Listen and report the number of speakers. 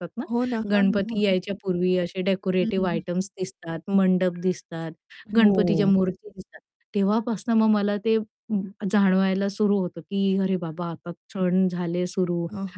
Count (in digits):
2